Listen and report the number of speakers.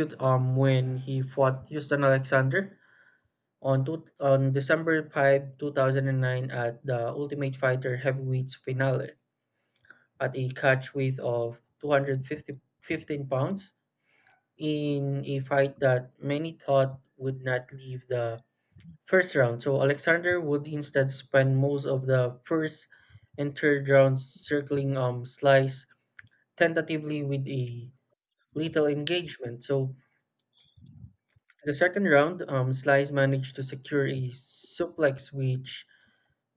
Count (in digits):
1